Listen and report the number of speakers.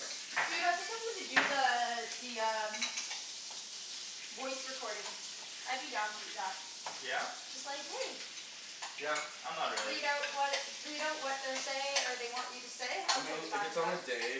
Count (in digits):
3